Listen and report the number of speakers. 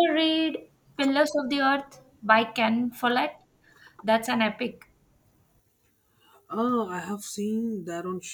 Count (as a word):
two